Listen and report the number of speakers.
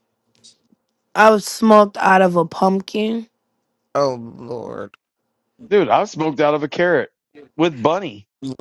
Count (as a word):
three